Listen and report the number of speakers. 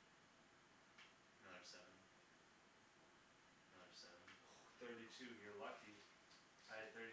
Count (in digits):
2